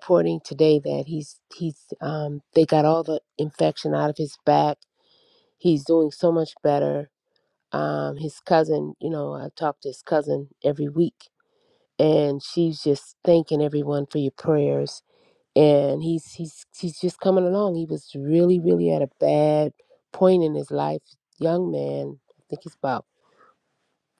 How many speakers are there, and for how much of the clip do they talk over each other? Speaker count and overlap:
1, no overlap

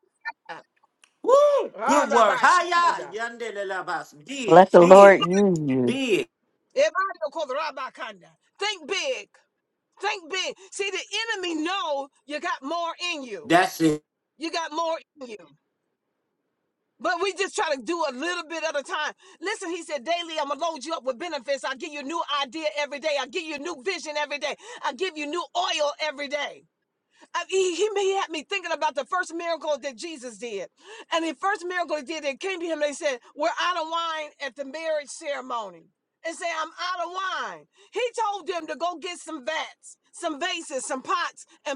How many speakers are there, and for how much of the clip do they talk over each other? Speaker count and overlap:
3, about 5%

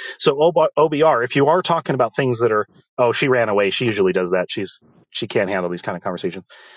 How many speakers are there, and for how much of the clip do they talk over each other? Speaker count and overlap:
1, no overlap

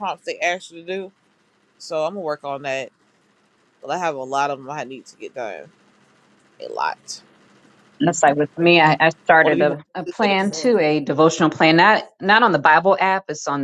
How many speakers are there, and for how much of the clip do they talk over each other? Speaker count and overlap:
2, about 9%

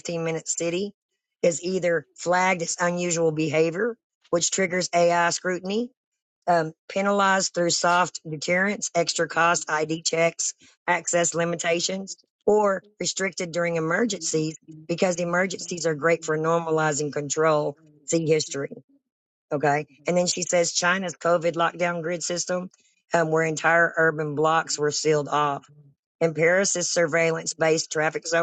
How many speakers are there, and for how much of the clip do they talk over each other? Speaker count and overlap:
1, no overlap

